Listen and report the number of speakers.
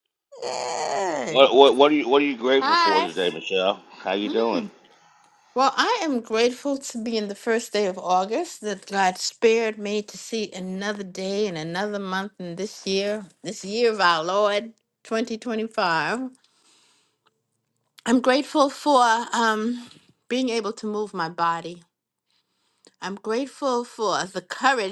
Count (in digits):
3